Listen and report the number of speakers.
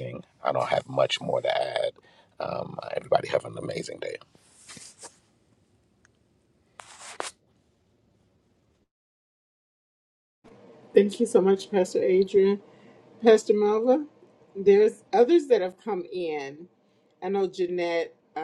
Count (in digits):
2